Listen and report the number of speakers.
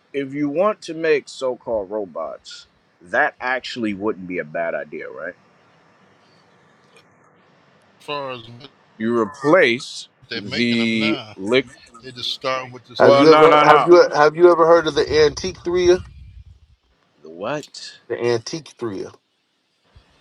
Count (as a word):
three